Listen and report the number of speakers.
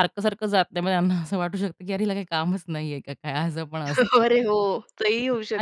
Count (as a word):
two